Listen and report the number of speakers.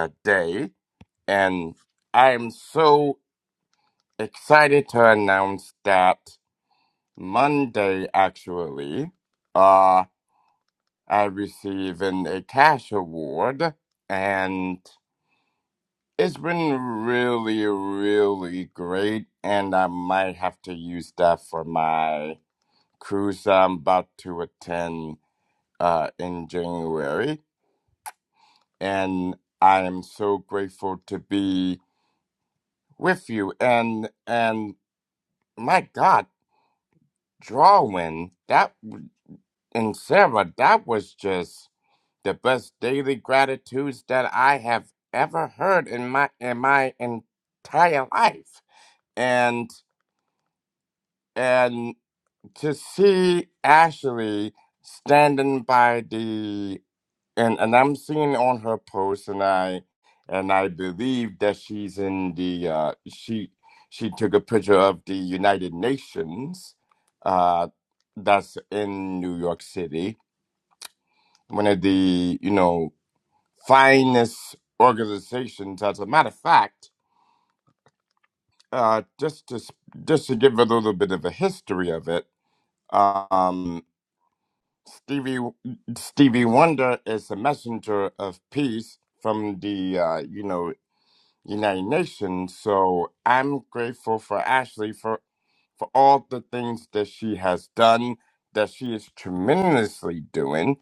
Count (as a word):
one